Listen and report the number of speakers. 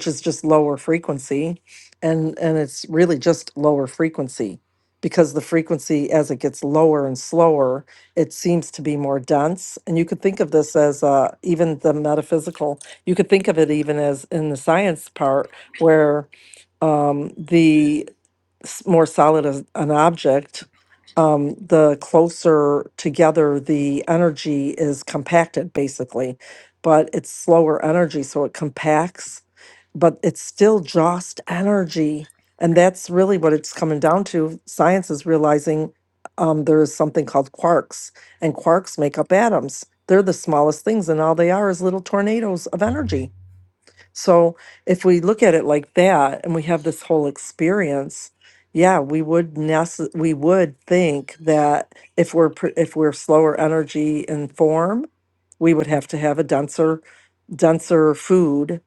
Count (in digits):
1